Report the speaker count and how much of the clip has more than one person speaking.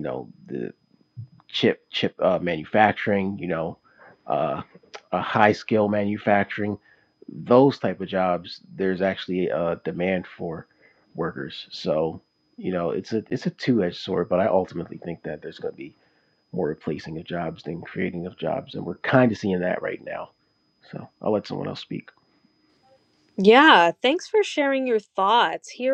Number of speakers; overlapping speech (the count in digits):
2, no overlap